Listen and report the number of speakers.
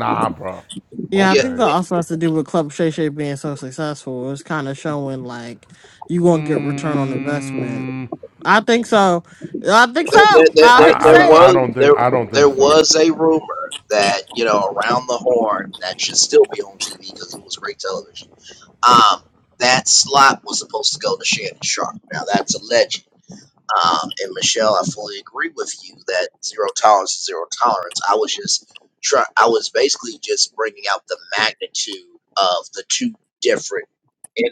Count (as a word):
three